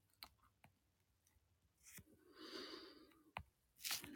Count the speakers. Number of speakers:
zero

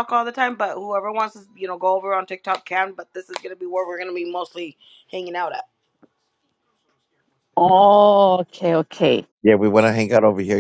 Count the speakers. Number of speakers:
three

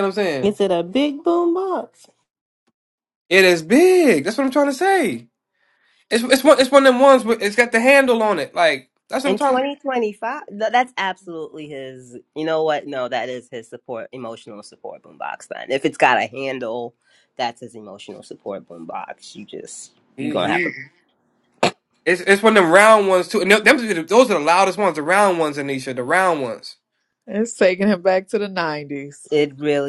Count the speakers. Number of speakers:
four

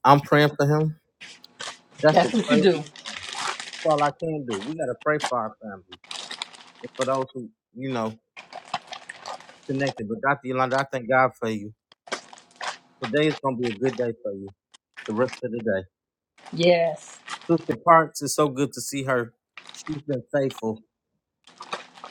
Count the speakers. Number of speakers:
two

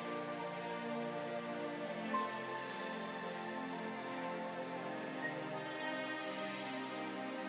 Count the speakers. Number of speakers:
zero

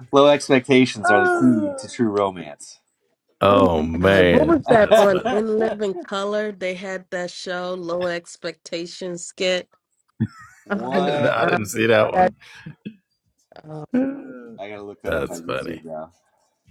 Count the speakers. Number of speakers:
three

